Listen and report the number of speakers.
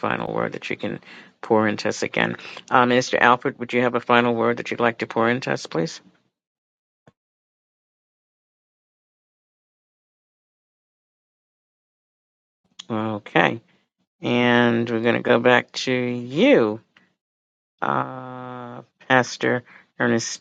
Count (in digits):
1